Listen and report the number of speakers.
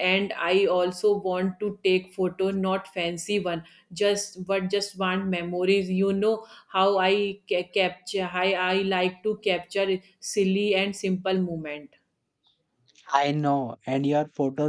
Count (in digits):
2